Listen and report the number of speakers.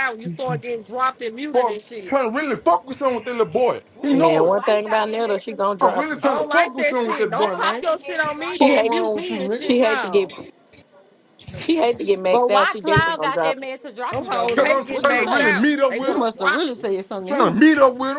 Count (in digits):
4